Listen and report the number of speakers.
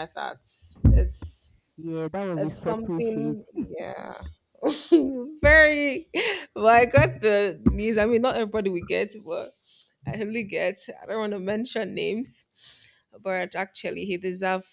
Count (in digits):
2